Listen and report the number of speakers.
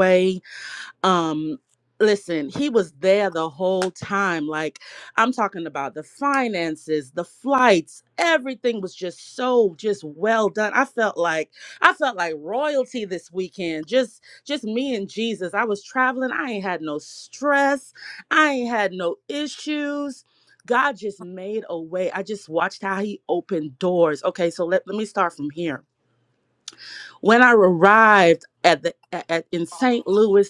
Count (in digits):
1